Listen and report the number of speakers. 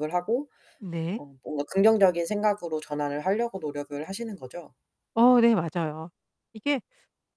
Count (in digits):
2